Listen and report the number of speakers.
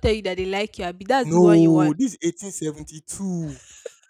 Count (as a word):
two